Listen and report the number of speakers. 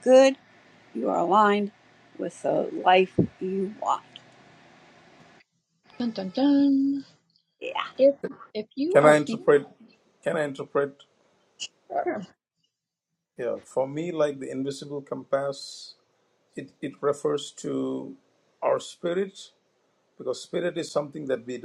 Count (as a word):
three